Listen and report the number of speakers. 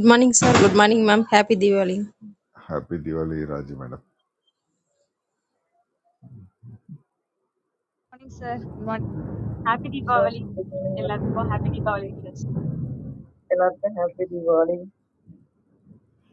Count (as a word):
four